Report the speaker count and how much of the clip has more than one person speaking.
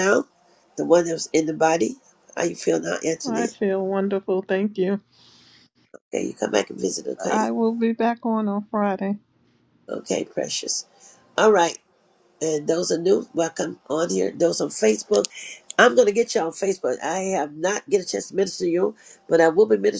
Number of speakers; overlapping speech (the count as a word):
two, about 3%